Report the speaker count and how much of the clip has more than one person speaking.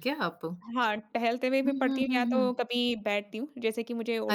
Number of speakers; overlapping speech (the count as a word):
two, about 18%